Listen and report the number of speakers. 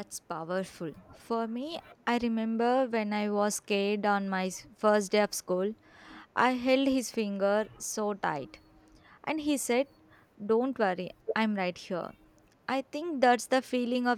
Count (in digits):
1